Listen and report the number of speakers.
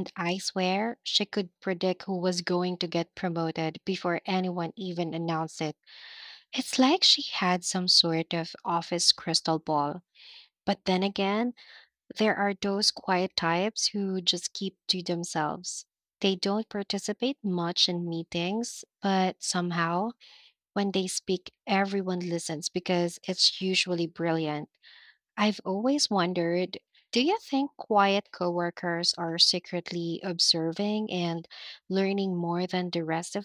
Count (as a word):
one